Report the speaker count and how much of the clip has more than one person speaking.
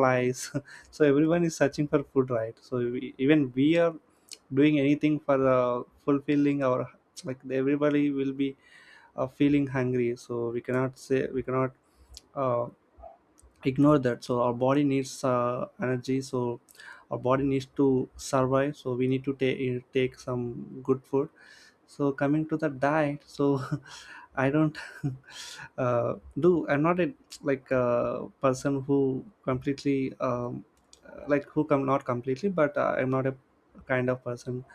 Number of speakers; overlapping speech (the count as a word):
one, no overlap